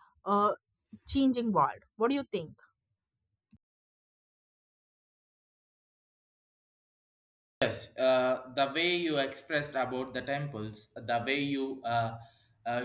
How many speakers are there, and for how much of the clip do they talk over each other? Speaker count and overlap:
two, no overlap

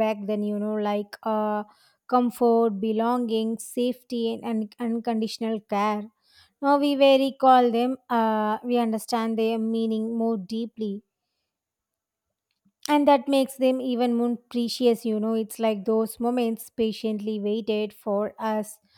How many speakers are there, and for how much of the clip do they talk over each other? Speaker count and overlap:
one, no overlap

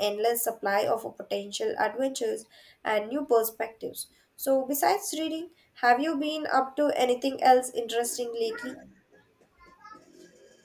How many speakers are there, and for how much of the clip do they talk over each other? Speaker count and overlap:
one, no overlap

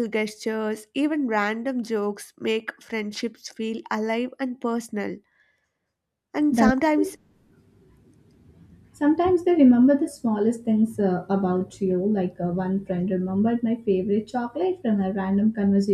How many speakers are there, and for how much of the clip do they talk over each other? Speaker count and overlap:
two, about 4%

